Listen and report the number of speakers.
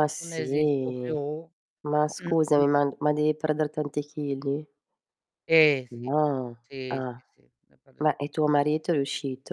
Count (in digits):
2